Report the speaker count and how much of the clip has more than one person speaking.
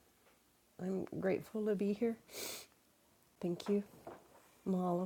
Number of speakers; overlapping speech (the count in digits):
1, no overlap